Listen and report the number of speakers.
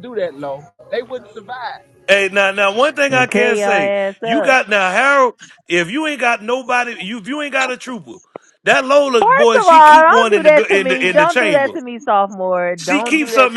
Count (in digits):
3